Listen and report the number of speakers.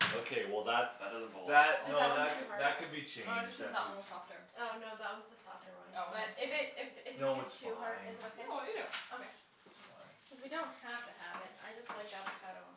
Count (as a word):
four